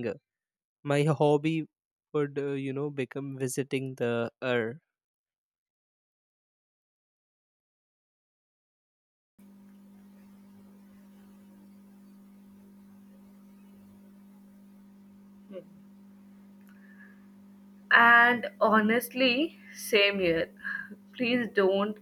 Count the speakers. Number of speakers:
2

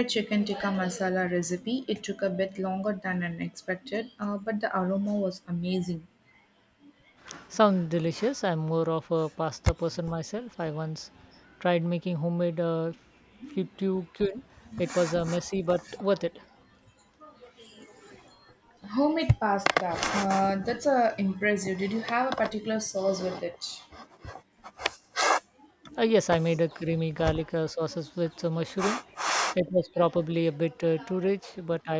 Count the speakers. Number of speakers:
2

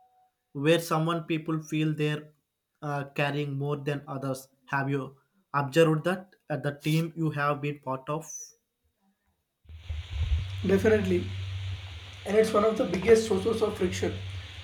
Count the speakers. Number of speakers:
2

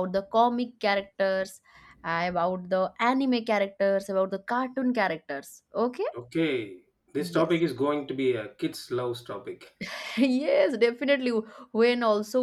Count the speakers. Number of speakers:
2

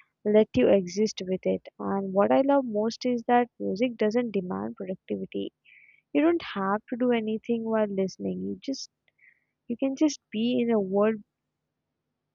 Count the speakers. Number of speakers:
1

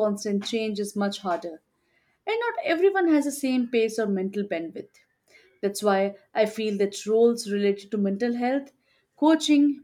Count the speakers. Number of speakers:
1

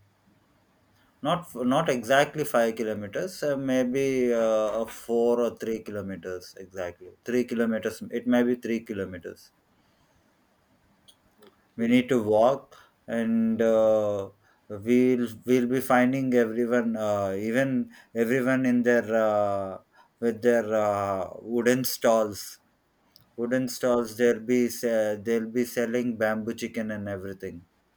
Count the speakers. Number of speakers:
1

